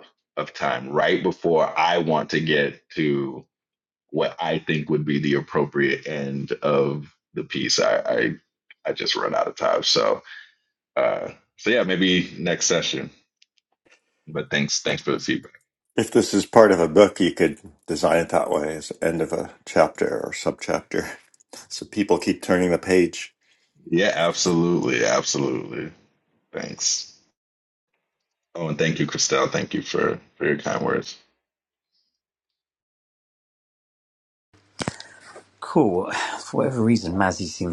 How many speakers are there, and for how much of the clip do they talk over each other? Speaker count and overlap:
3, no overlap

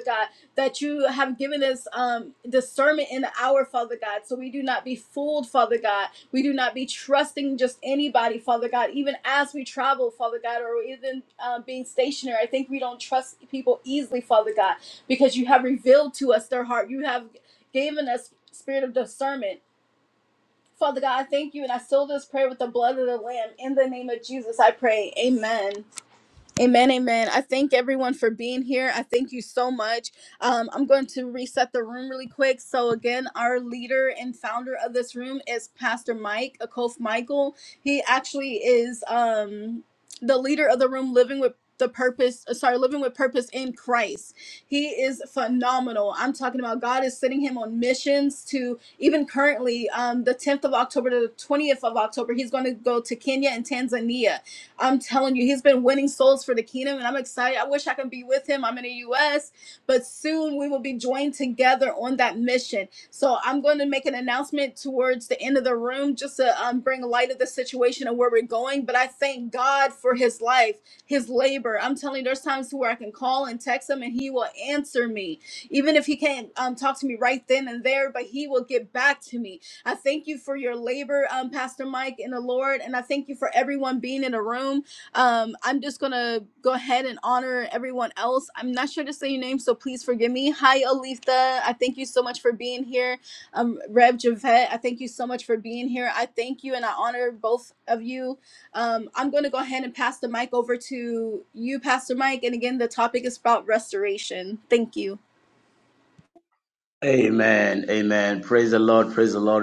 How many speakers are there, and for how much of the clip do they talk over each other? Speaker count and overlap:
2, no overlap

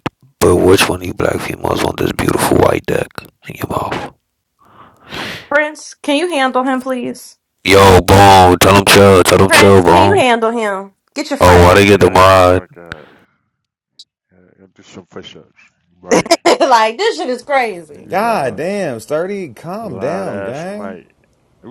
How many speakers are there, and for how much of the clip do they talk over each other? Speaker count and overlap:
4, about 16%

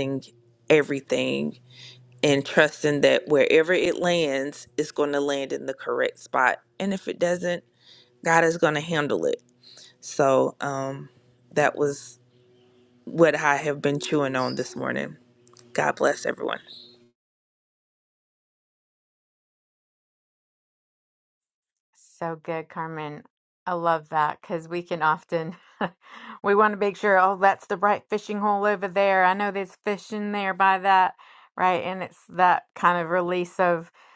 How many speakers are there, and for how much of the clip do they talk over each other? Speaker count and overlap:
2, no overlap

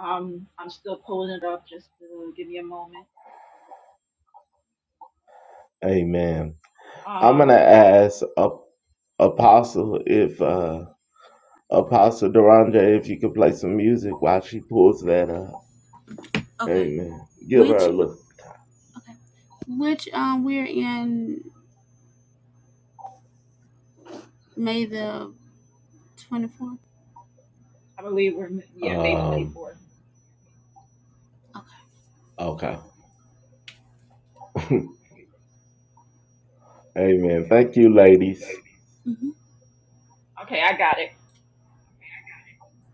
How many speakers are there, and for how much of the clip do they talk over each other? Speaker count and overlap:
3, about 4%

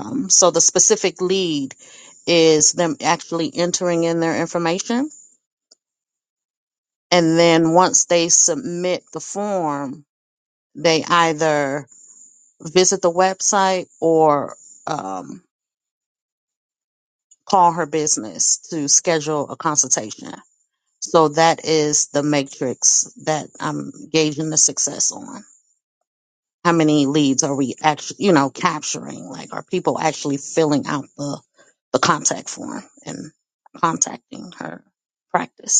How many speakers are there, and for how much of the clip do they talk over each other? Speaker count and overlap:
1, no overlap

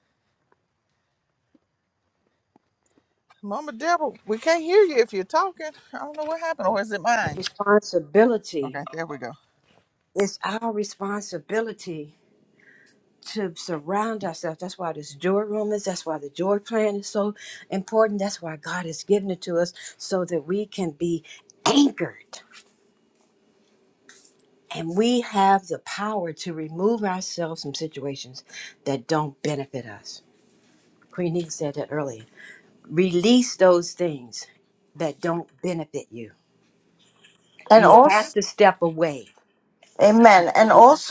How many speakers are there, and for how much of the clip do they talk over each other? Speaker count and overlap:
3, about 1%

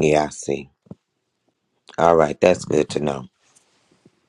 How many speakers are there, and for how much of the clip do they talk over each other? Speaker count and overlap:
1, no overlap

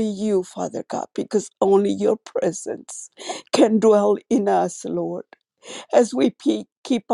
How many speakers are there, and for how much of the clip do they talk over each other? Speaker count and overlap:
1, no overlap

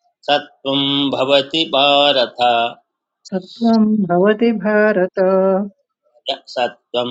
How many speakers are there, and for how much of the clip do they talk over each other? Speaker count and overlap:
2, no overlap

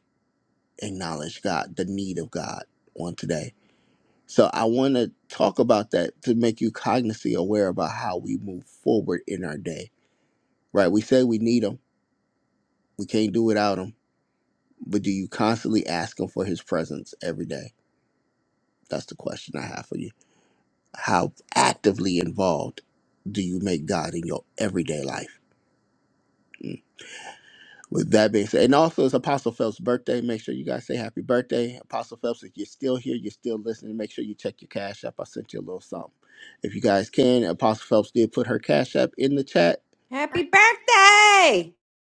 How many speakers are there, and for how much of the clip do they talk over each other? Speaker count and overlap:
2, no overlap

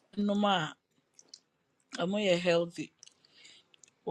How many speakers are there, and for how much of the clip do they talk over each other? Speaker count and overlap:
1, no overlap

